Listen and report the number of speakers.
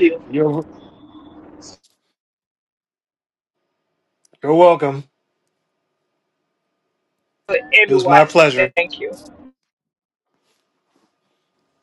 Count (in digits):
2